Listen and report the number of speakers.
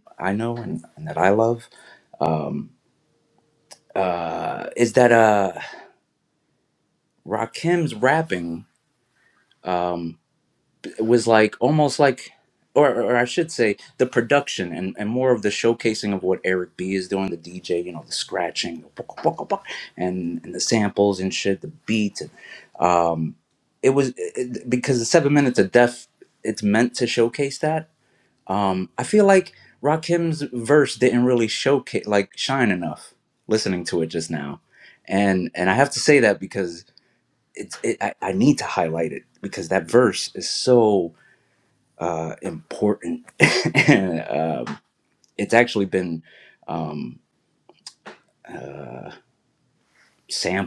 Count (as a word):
one